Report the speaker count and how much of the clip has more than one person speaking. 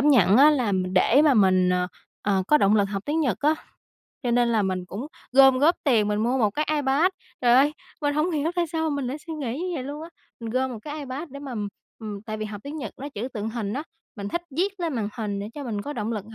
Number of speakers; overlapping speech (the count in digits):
1, no overlap